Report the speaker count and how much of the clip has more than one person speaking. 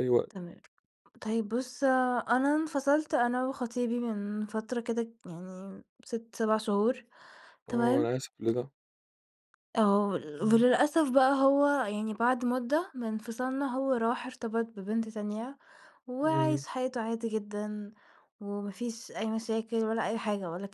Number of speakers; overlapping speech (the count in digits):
2, about 4%